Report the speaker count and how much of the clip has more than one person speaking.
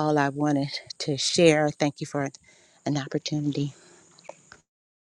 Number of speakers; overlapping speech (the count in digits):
1, no overlap